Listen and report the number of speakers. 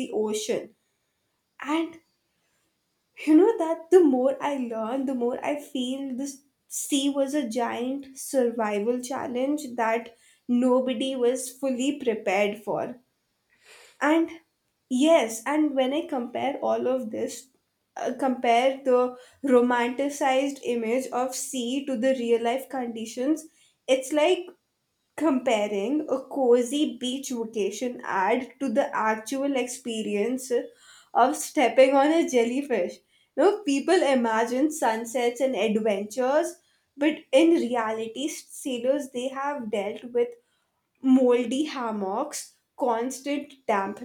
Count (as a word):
one